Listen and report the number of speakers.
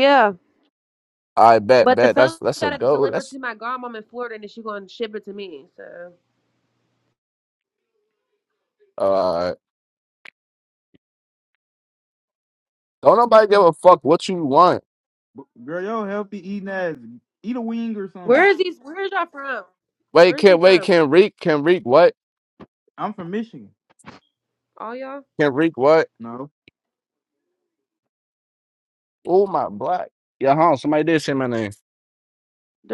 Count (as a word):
three